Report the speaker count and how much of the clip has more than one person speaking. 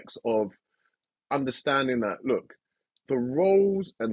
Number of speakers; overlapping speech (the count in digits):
1, no overlap